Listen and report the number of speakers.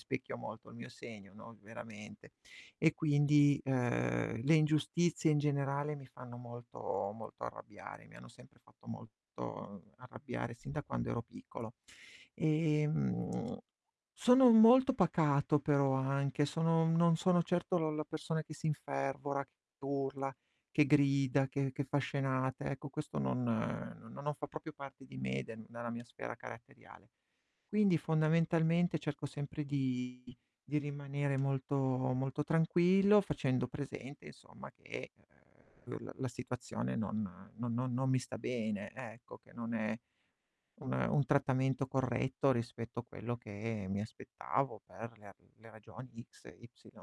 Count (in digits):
1